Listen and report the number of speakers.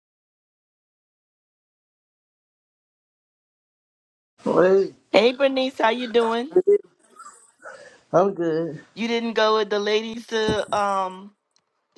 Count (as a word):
two